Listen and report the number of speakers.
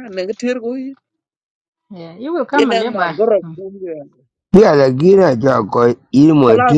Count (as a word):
three